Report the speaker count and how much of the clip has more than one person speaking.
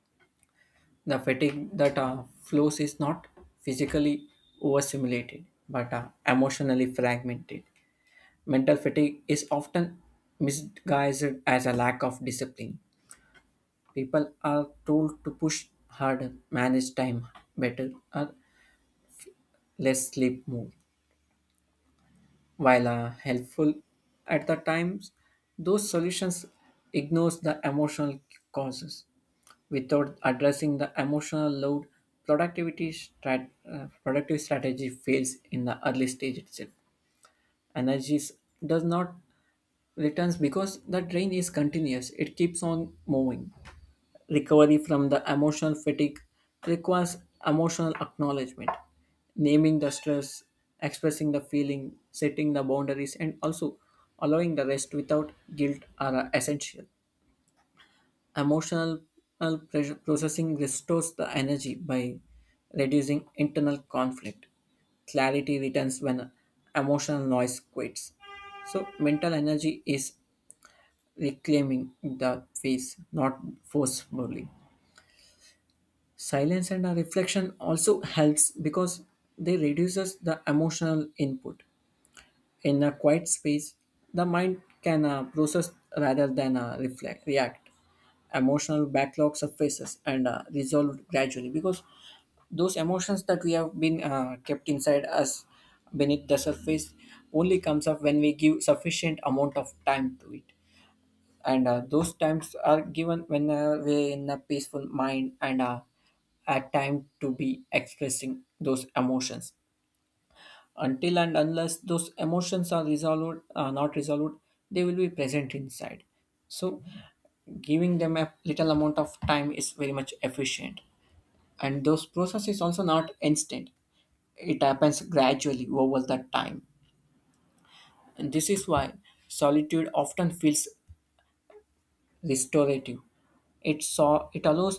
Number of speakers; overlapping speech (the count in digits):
1, no overlap